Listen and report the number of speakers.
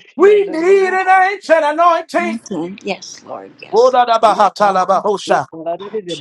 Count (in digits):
3